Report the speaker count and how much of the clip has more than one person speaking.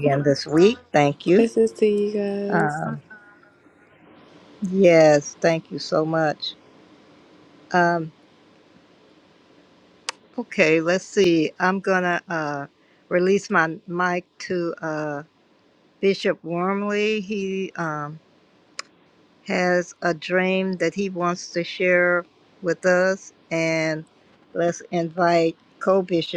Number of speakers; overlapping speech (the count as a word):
two, about 1%